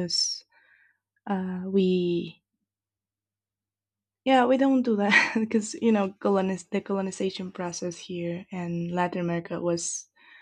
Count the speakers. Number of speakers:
1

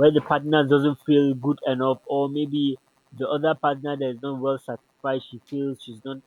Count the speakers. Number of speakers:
1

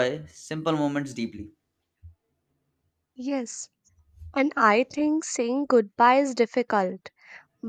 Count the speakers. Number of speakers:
2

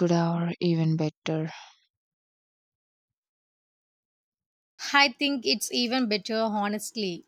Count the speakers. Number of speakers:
2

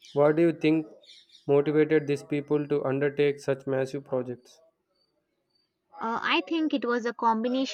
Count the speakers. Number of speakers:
2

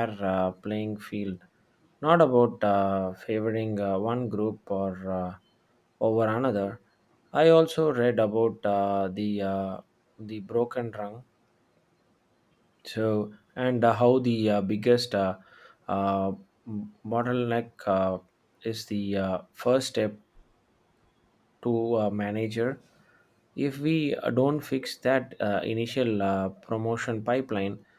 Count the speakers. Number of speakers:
1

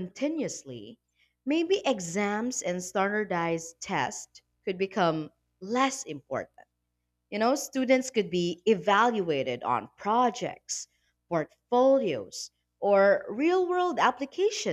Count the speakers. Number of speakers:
1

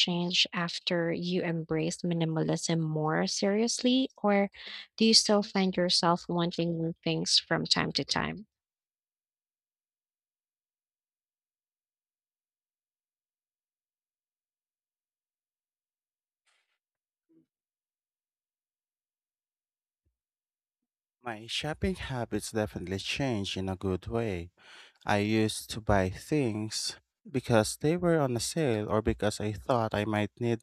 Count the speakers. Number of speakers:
2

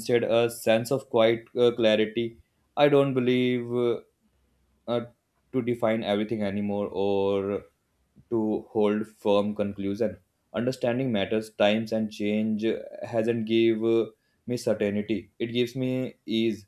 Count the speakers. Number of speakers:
1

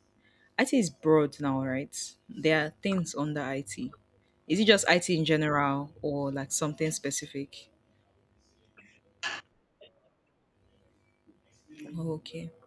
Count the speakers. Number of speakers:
1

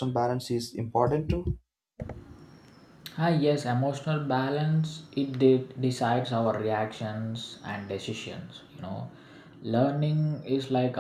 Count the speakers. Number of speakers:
2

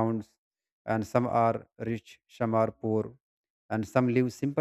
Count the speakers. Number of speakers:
1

